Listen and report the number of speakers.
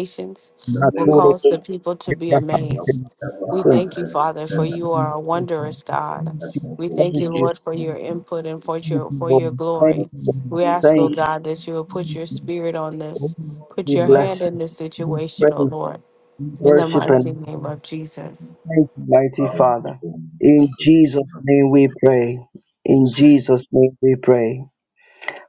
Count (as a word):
three